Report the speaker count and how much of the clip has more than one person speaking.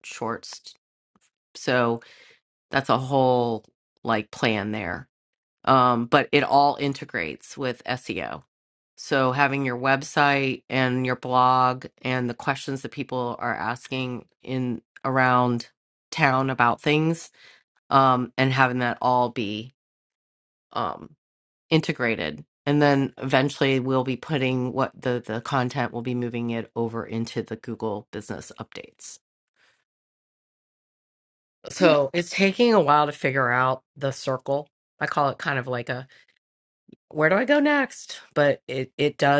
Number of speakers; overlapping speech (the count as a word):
one, no overlap